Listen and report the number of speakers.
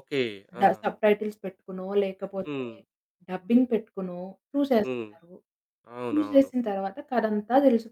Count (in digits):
2